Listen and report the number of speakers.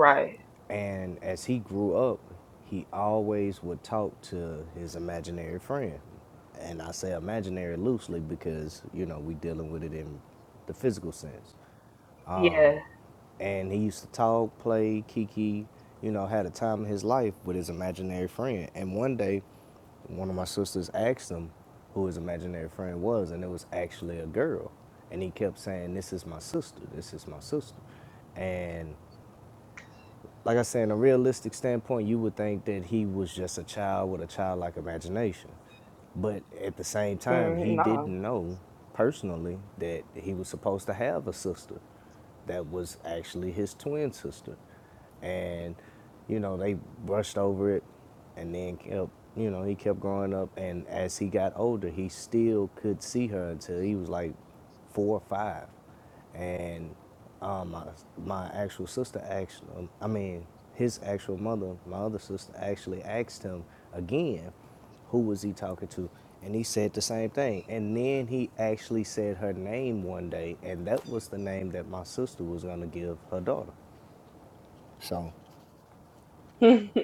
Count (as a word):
two